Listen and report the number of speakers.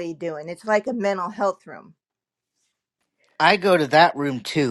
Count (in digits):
2